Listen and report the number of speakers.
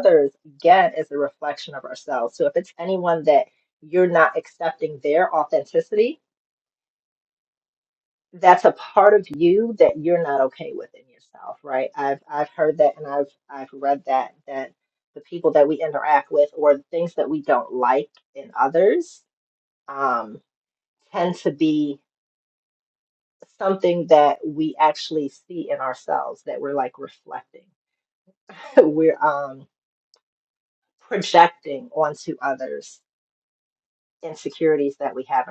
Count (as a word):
one